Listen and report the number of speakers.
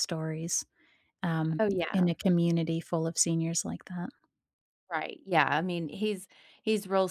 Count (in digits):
2